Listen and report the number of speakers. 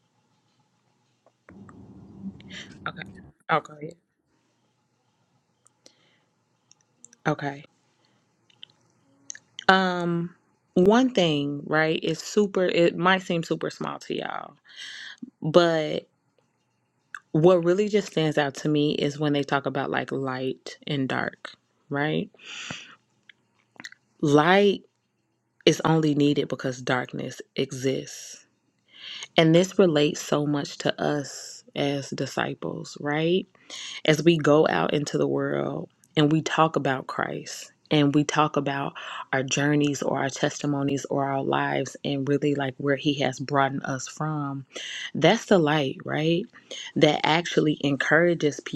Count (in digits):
1